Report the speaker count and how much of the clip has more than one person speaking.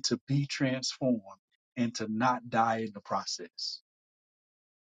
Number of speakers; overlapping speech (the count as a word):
one, no overlap